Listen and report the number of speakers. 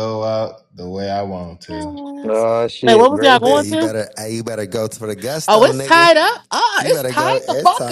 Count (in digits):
4